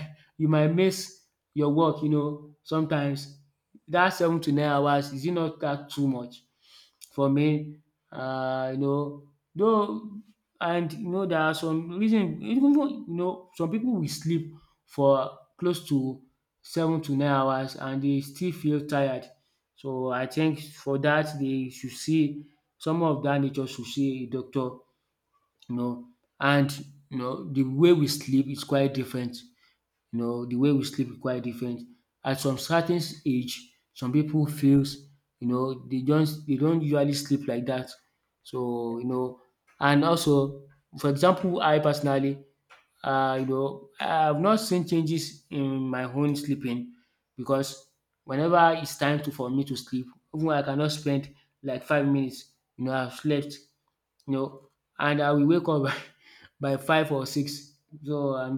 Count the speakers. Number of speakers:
1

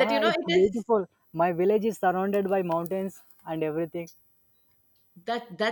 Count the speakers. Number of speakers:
2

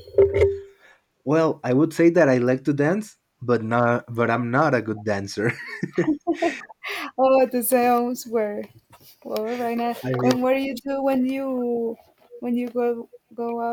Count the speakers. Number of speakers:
2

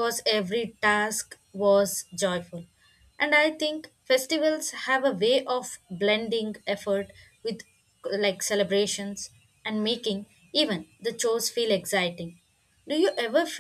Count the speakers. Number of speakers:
1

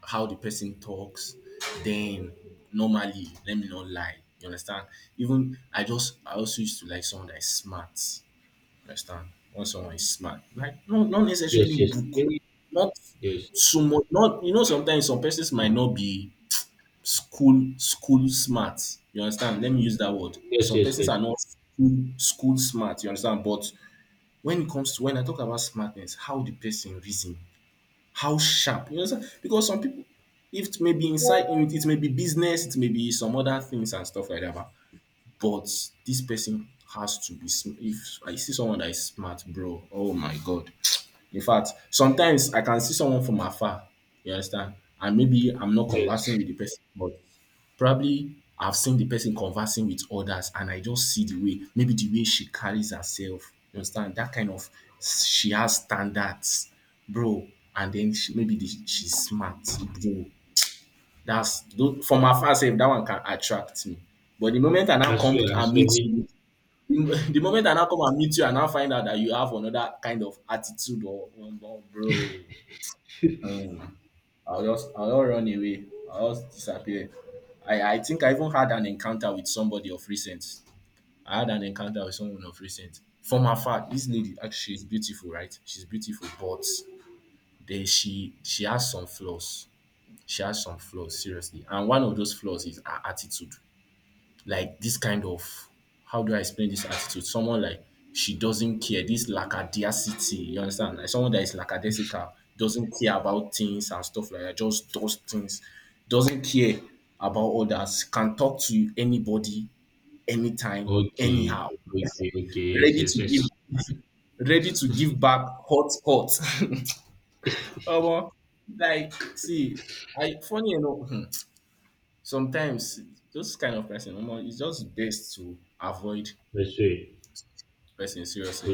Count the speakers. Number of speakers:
2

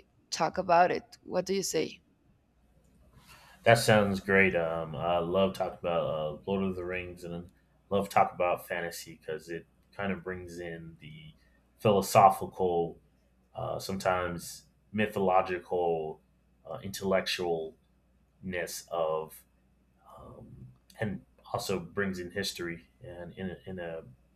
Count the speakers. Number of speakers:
2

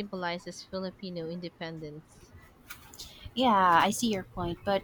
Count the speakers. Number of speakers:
2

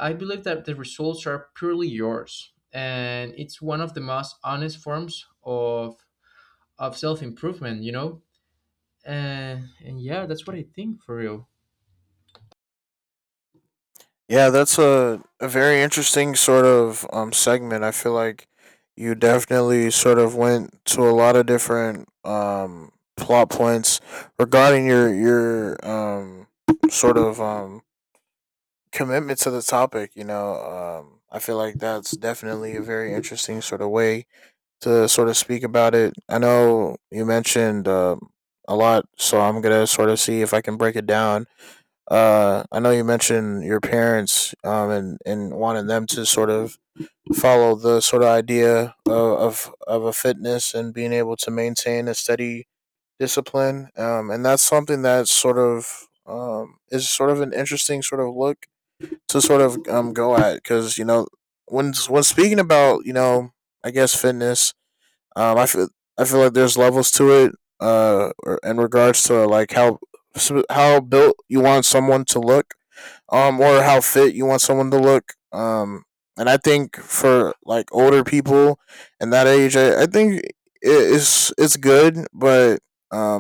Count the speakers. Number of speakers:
2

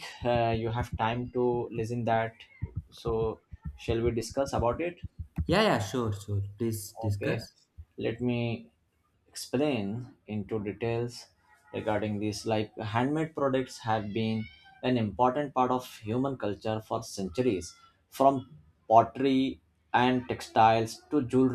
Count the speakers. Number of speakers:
2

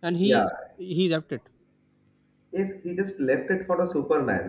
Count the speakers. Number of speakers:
2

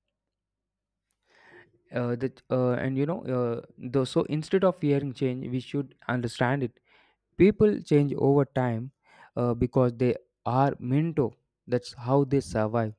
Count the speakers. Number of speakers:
1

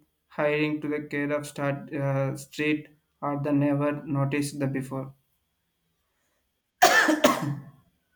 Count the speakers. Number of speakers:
1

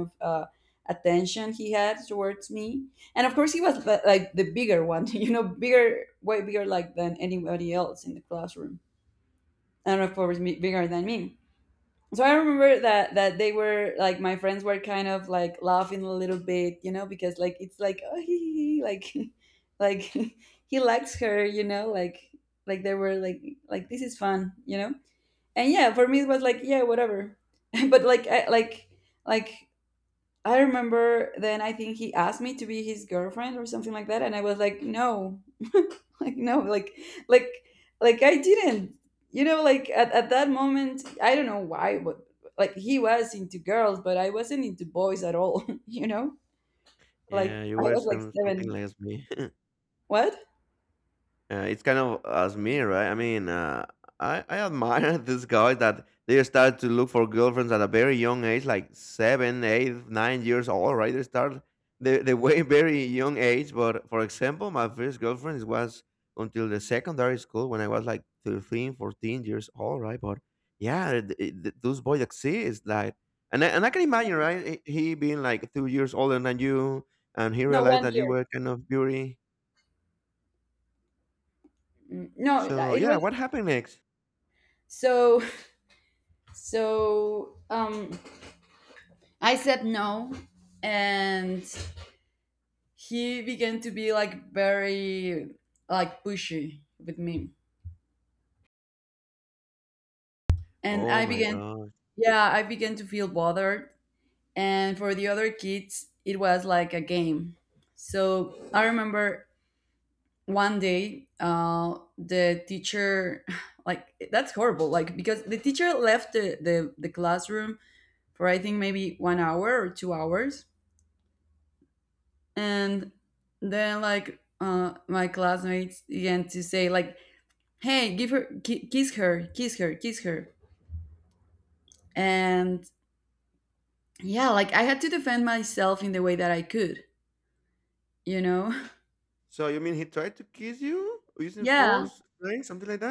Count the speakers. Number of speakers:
2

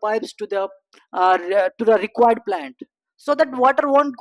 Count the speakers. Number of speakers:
1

